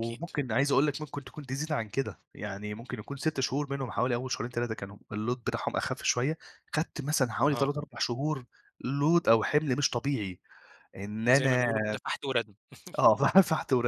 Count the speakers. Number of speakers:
two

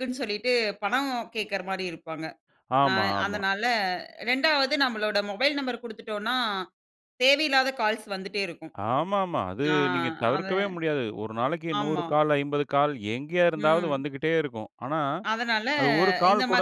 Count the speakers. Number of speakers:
two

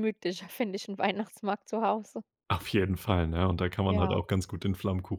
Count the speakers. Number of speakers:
two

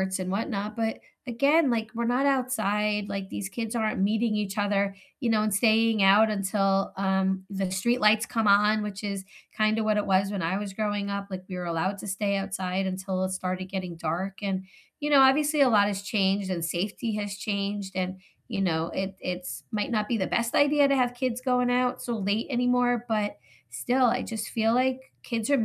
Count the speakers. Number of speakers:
one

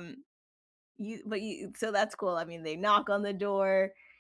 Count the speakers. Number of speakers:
one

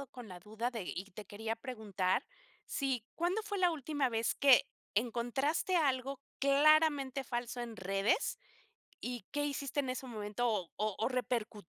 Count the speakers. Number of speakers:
one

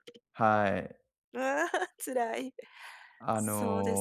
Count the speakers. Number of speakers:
two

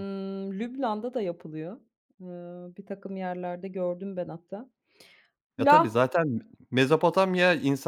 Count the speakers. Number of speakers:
two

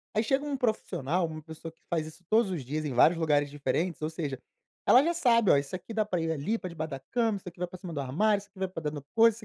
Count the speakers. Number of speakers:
one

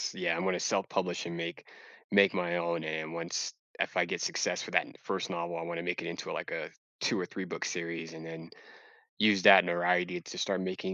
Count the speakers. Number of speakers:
one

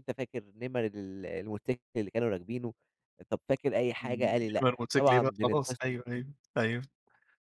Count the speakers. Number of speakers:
two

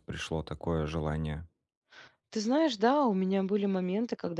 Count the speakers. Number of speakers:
two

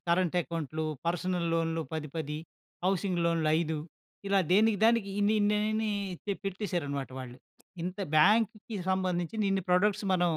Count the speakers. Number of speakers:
one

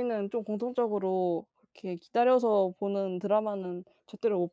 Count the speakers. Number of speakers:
one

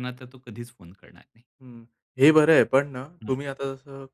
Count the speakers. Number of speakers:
two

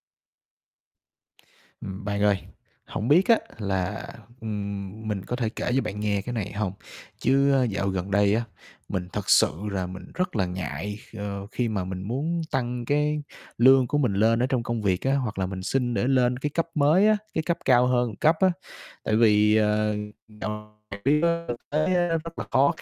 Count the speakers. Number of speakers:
one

